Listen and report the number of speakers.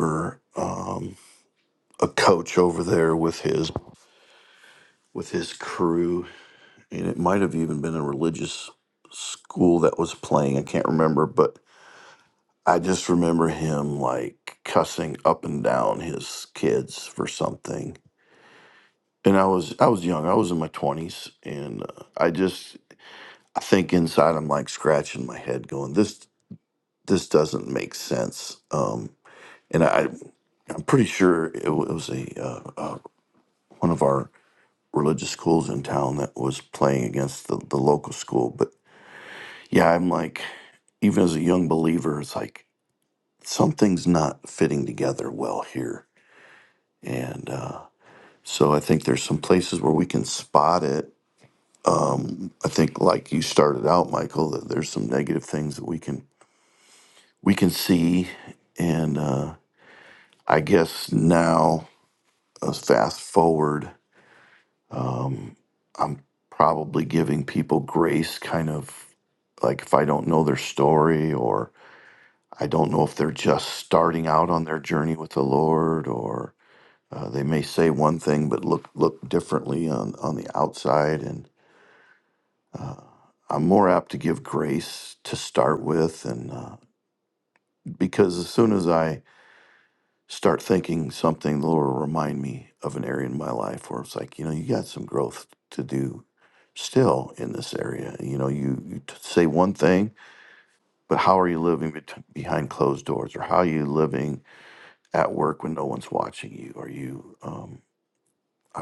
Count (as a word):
one